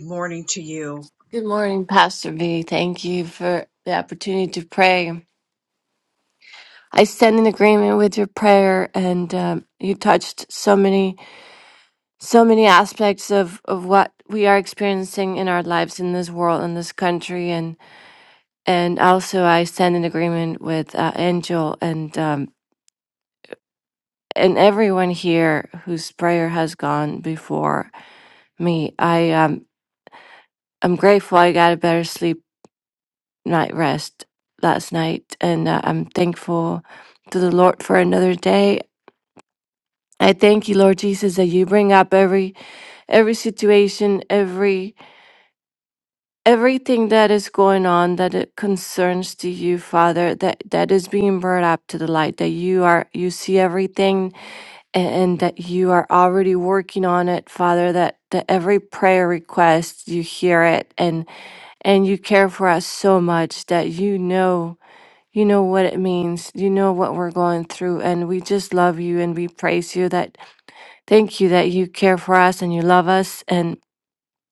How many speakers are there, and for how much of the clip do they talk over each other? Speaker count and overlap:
2, no overlap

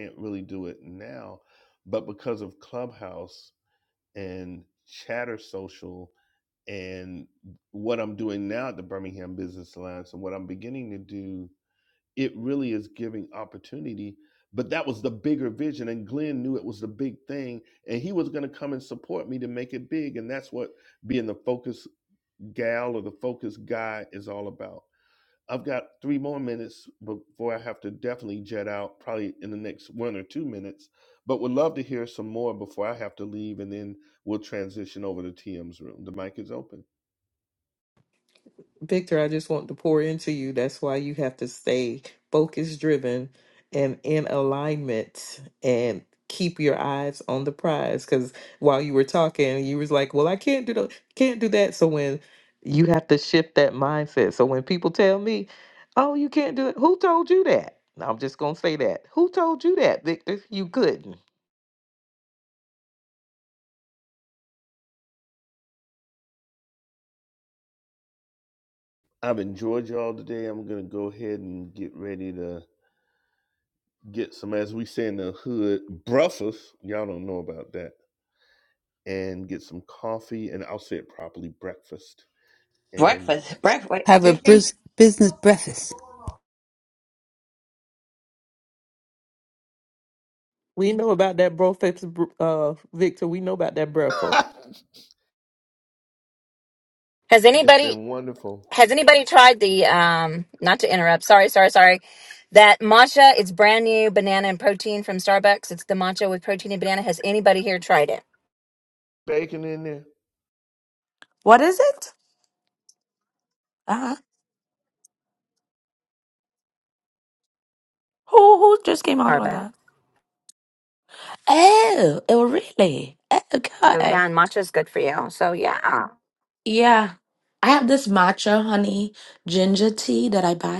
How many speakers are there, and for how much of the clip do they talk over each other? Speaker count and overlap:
6, about 1%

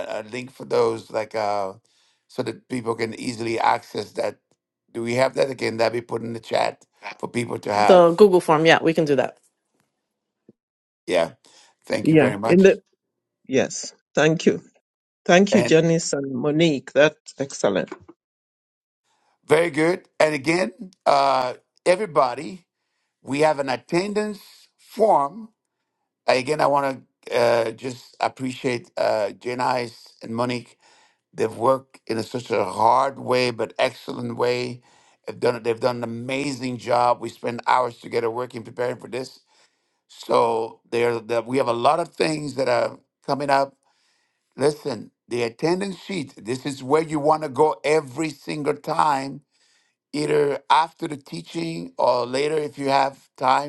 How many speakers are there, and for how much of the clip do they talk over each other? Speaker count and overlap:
3, about 2%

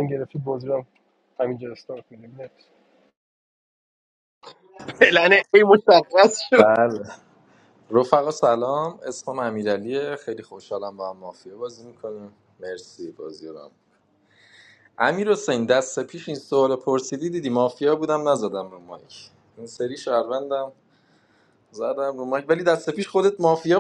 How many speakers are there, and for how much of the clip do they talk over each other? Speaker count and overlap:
3, about 1%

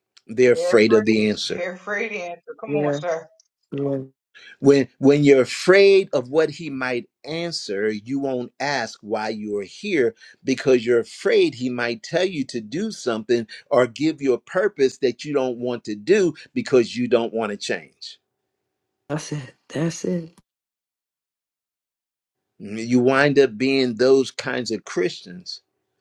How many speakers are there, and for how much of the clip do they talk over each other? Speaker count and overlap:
3, about 6%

